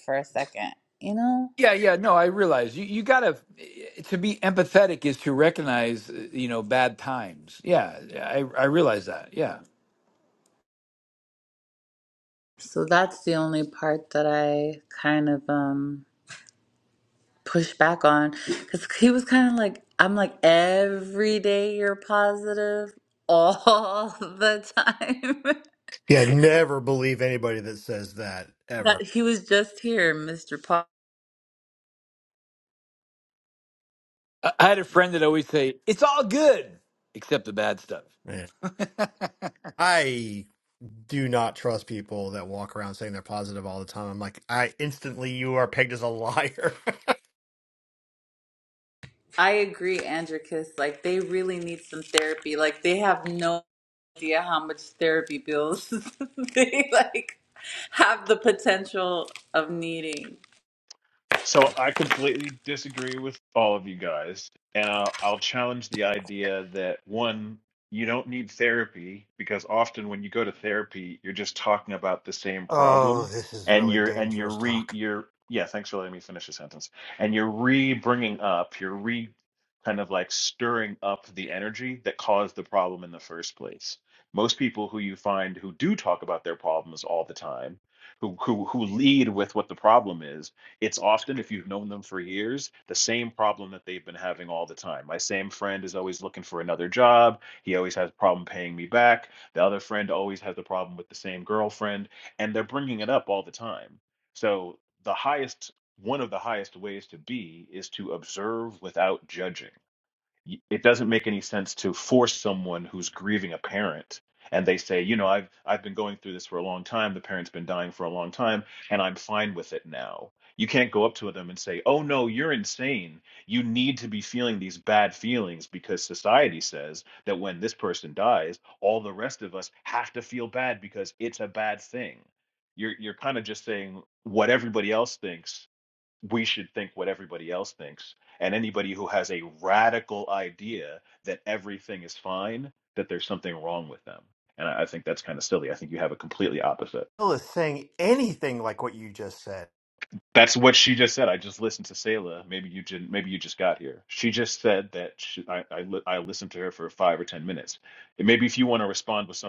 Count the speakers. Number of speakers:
4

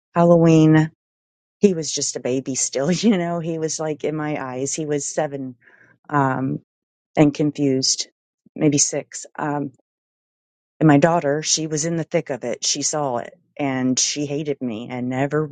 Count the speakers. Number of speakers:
1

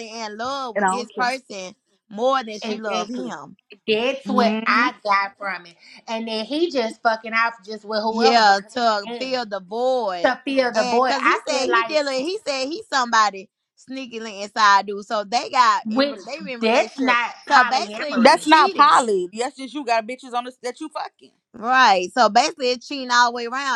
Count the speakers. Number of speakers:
3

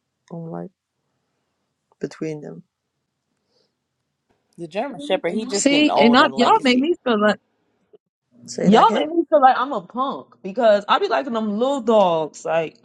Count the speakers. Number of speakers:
3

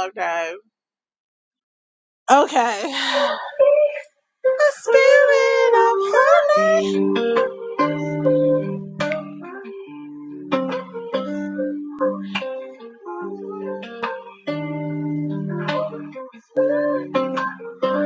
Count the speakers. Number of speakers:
1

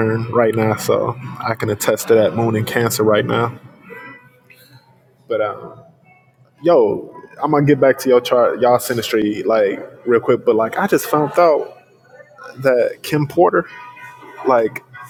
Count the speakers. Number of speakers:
1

